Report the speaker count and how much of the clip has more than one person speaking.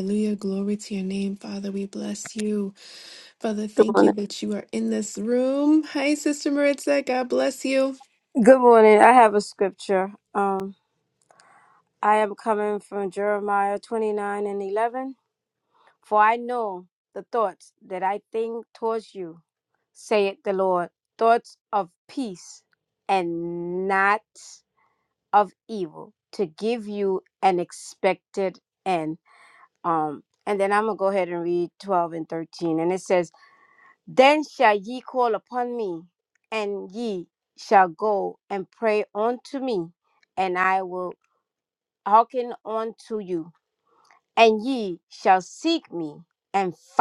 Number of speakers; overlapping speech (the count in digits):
2, about 1%